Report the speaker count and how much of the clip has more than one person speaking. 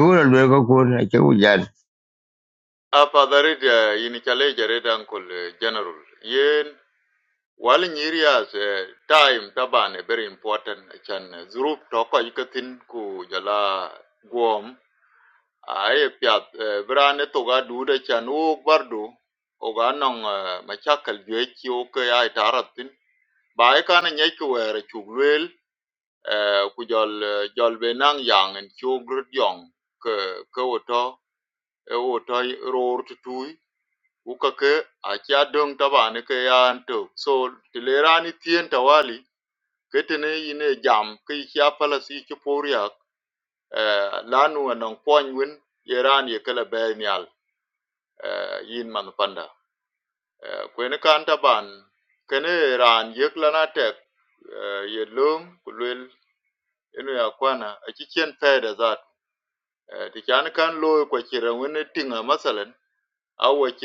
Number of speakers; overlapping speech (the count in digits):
2, no overlap